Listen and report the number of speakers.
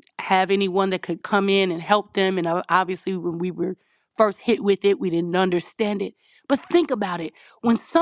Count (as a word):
one